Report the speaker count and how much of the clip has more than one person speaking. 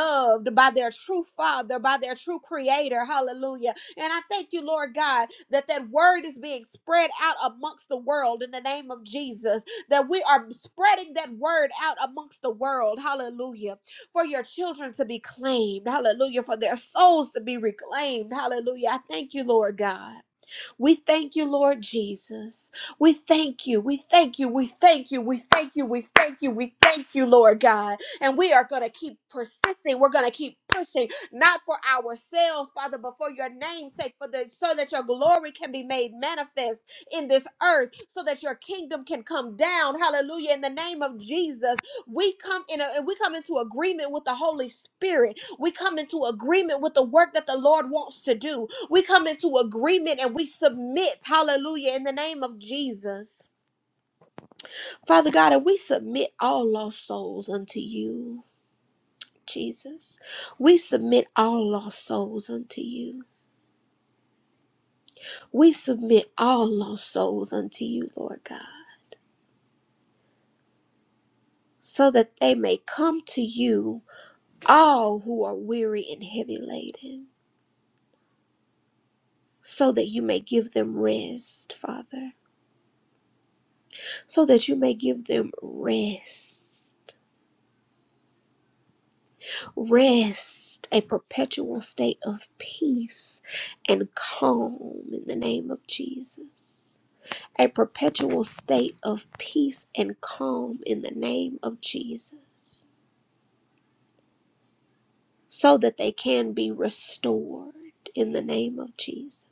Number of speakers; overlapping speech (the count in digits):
1, no overlap